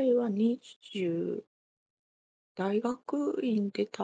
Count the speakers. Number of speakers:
1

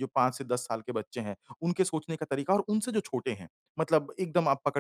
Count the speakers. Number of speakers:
1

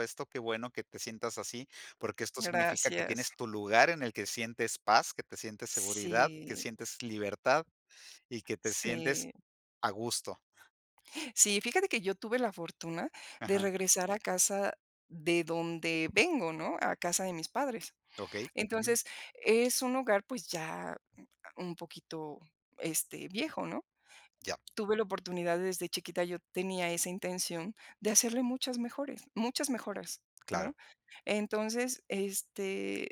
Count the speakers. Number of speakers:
2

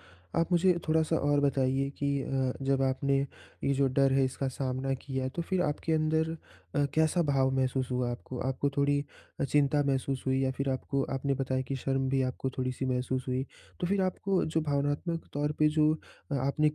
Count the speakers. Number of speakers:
1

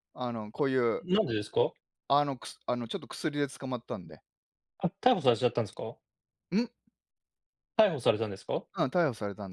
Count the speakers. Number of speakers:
2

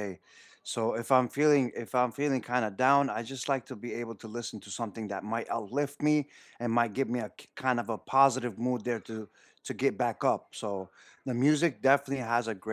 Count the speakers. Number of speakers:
1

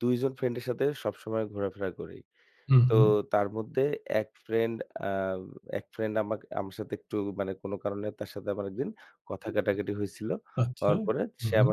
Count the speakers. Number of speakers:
2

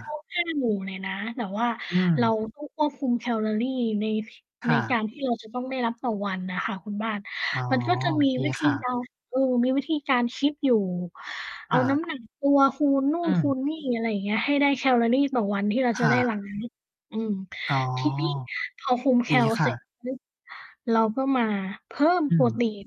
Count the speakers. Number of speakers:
2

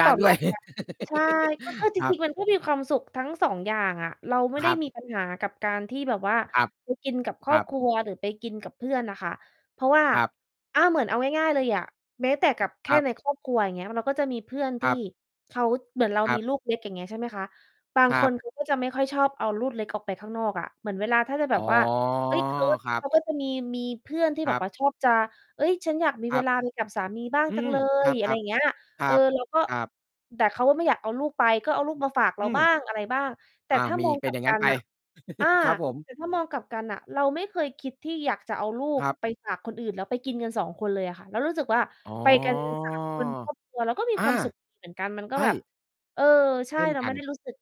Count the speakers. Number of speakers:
2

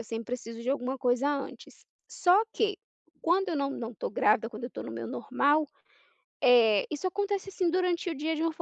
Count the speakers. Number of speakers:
1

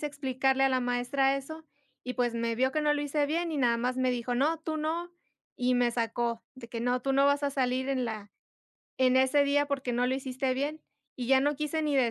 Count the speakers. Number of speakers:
1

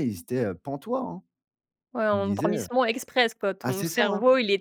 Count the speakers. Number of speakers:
2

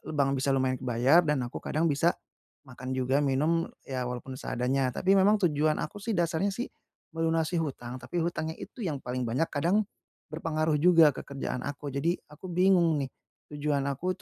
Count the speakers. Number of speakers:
1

